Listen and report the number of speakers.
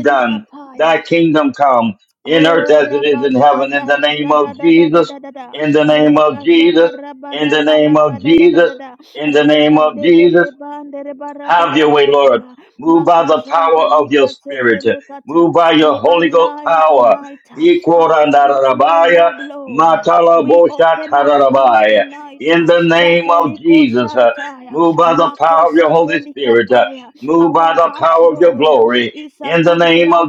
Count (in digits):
2